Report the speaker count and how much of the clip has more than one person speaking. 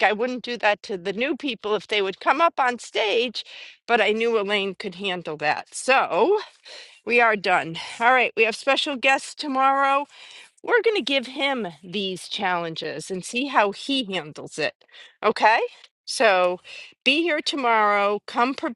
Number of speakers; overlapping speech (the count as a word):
one, no overlap